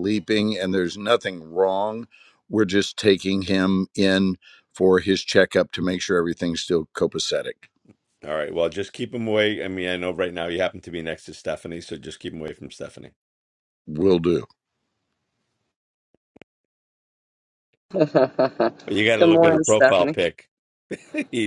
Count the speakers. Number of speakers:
3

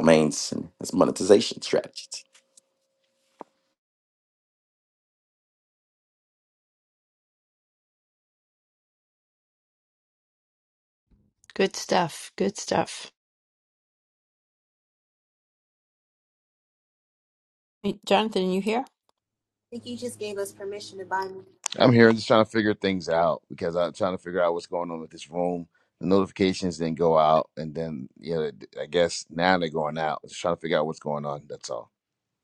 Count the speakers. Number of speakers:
4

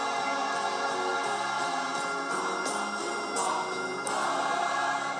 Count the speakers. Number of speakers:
0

